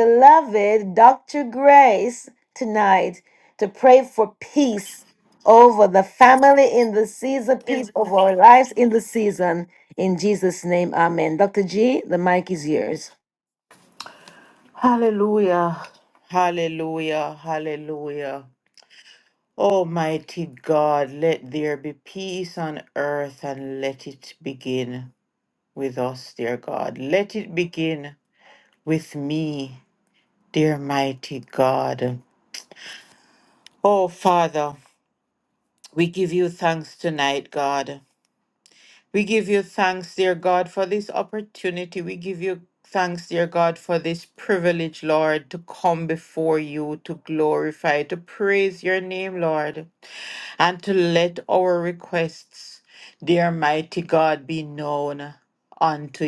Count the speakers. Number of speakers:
2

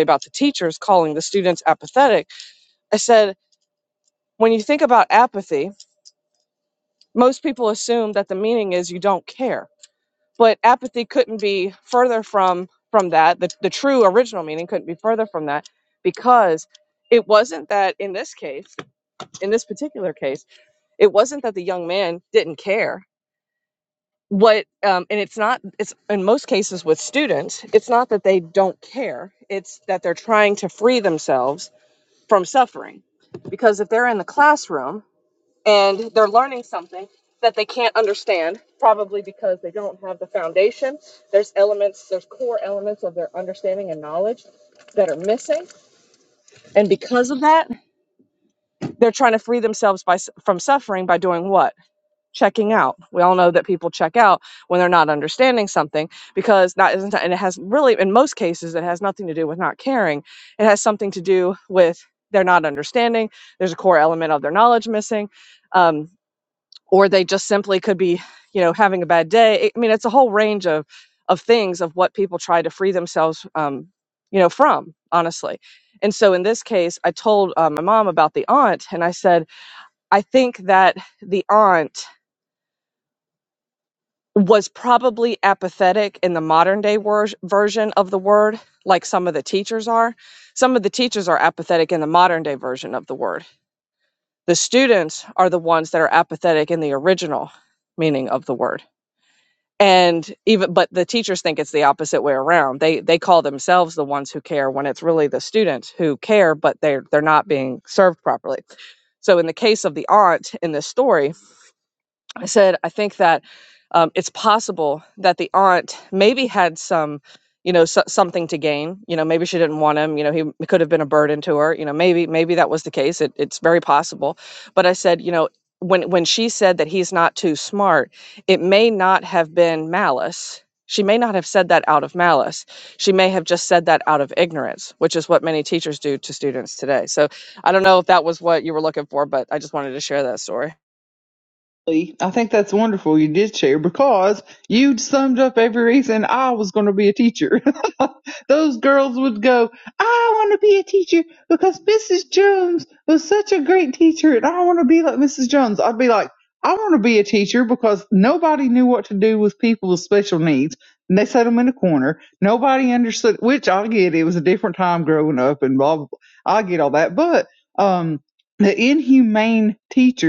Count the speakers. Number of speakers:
2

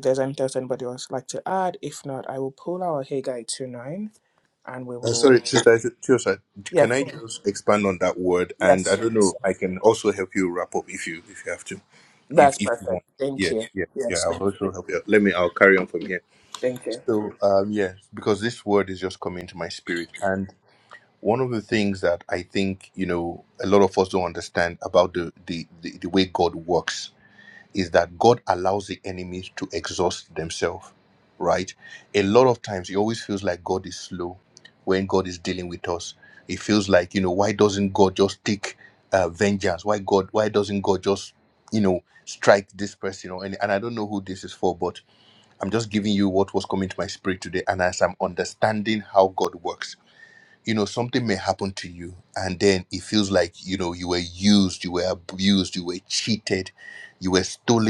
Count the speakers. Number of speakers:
2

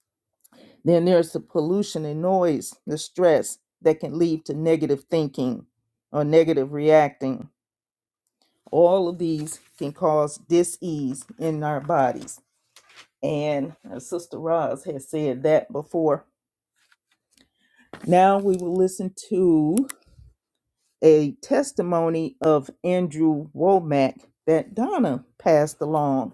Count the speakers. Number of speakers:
1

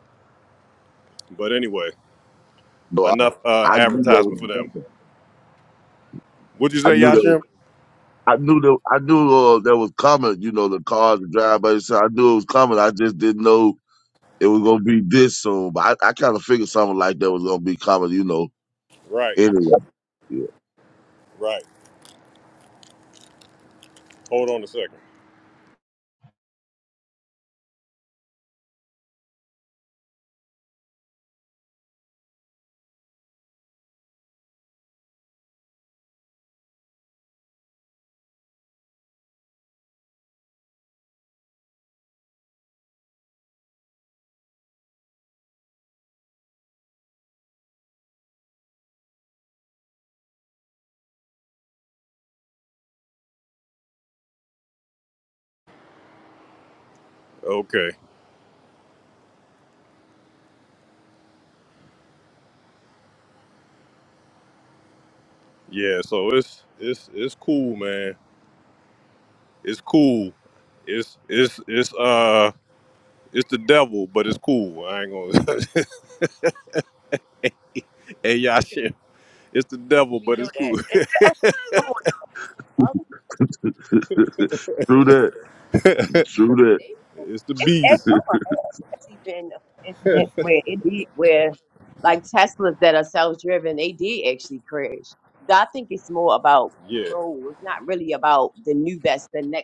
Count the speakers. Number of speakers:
3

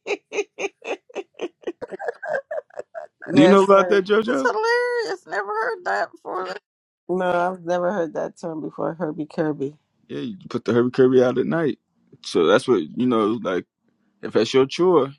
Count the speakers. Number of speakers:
3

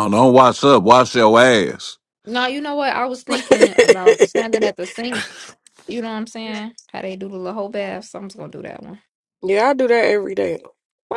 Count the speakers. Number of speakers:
3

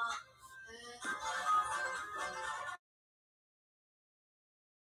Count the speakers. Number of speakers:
0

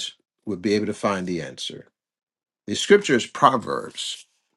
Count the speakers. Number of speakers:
1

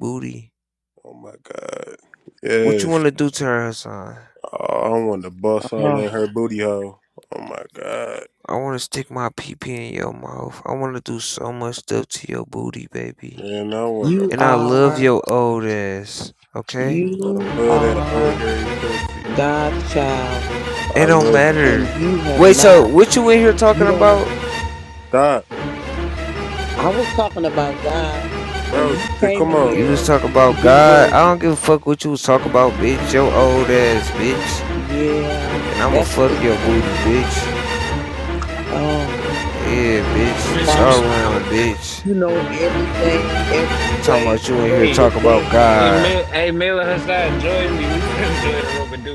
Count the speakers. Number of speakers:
4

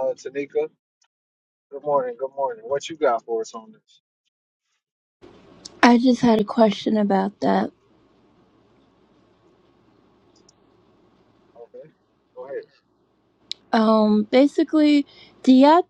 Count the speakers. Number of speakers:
2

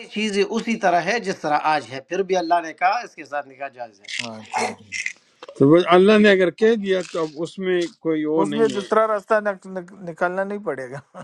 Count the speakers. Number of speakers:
3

